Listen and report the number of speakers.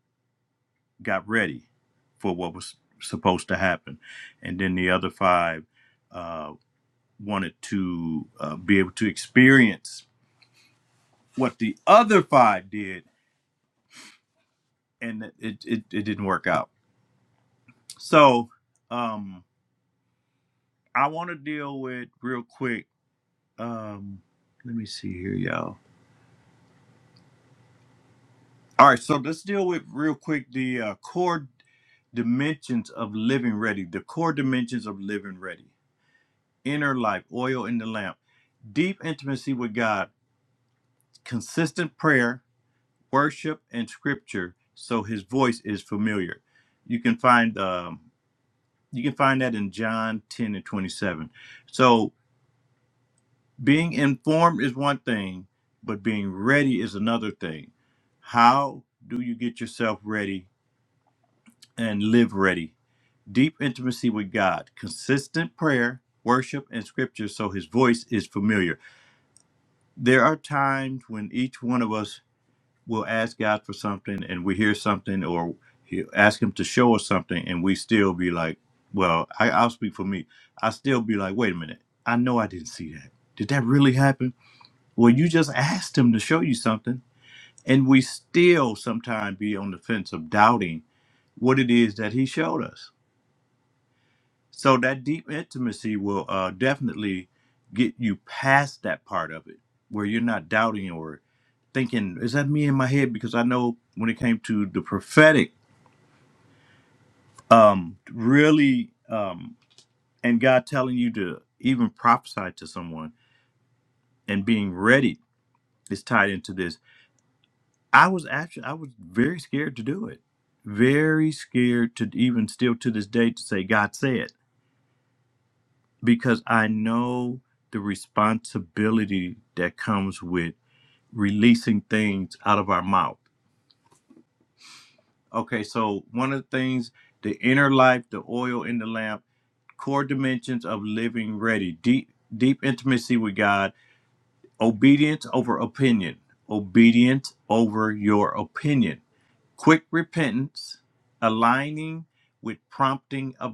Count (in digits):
1